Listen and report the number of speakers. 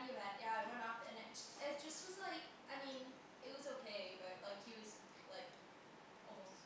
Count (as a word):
one